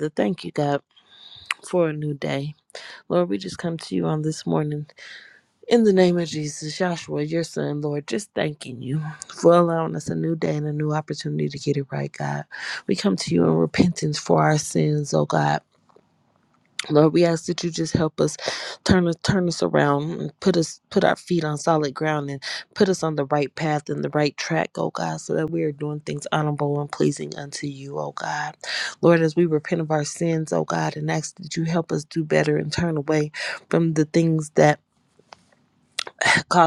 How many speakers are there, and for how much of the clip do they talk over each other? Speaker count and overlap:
one, no overlap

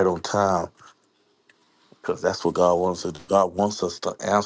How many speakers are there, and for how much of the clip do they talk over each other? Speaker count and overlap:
one, no overlap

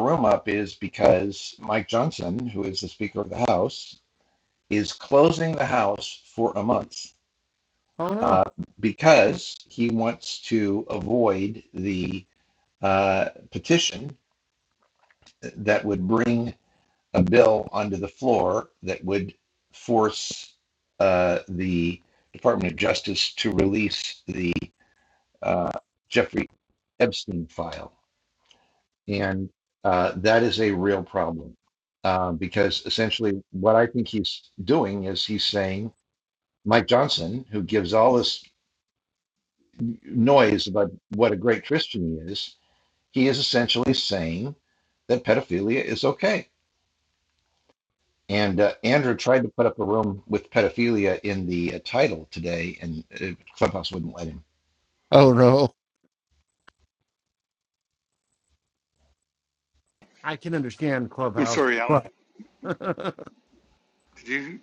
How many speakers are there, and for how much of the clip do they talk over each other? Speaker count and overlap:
three, about 1%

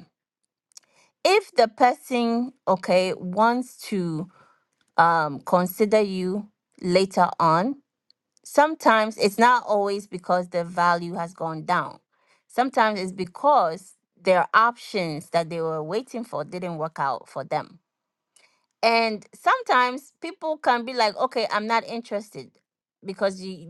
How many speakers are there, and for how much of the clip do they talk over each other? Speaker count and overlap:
one, no overlap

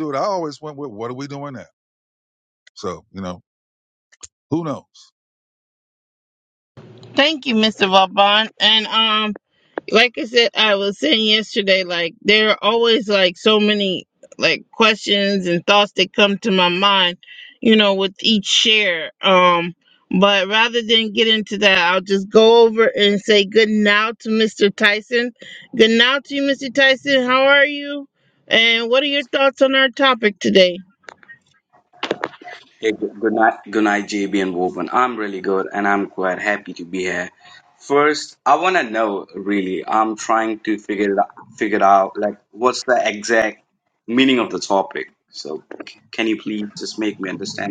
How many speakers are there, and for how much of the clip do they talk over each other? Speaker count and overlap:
three, no overlap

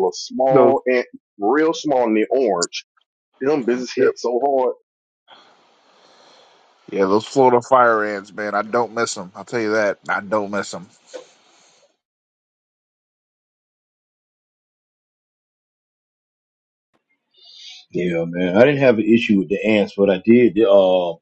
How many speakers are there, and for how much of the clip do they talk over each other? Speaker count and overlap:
three, about 2%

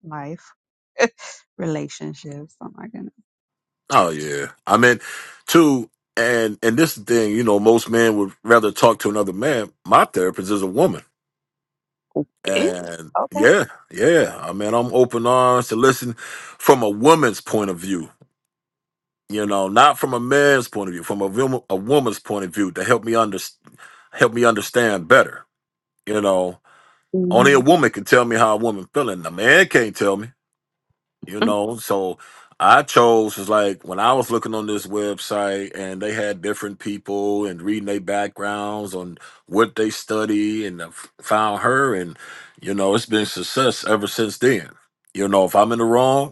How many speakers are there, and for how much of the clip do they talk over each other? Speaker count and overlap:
two, about 2%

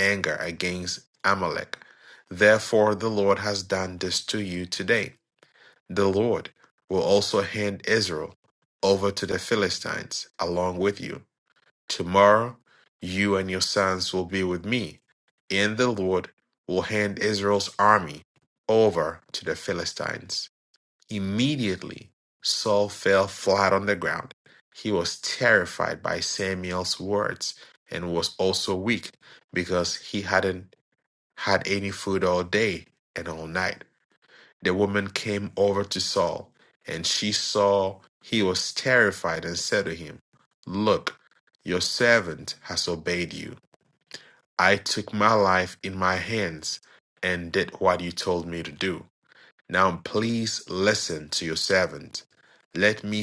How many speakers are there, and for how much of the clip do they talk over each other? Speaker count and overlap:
one, no overlap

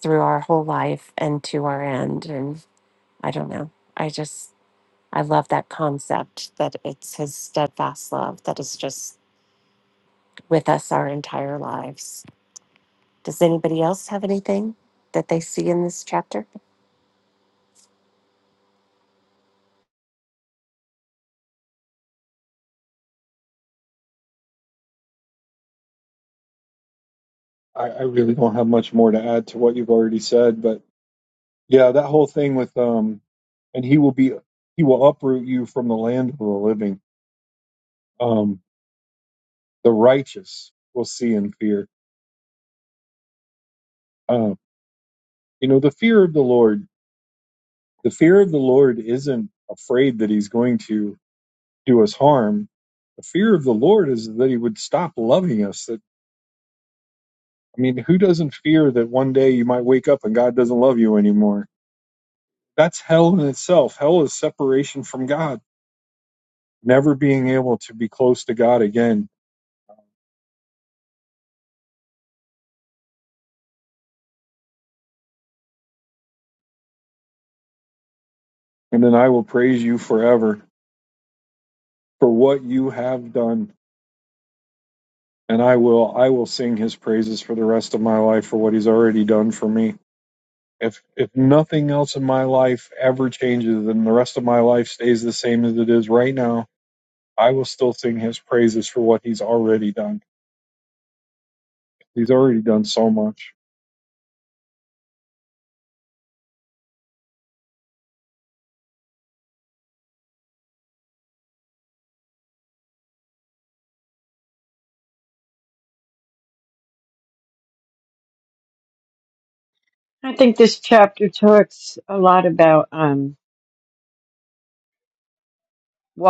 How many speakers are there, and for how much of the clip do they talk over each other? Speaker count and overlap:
three, no overlap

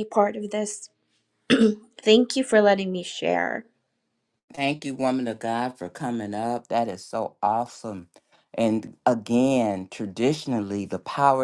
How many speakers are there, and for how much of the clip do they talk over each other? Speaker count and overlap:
two, no overlap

